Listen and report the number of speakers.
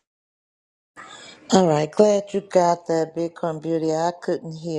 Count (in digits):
1